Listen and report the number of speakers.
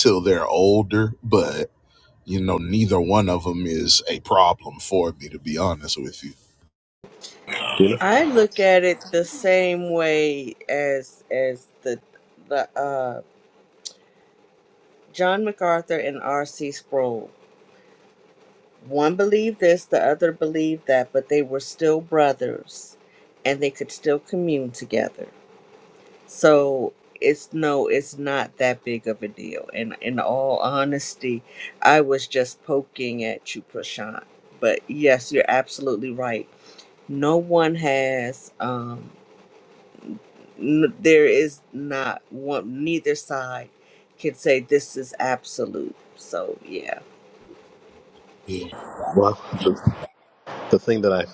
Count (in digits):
3